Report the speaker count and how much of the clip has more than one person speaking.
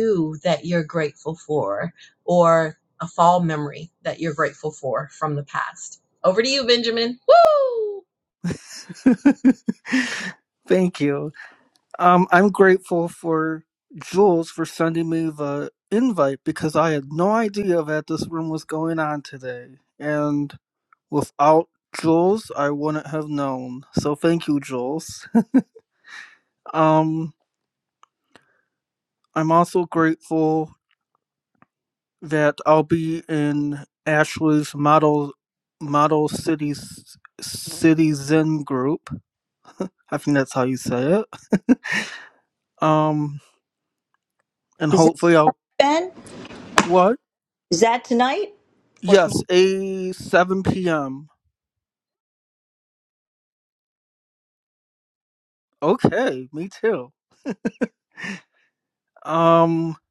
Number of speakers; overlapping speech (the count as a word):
three, about 1%